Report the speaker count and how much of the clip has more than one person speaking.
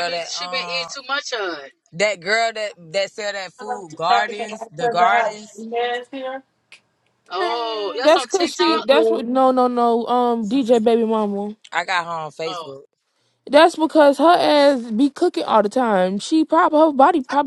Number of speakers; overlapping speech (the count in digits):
4, about 29%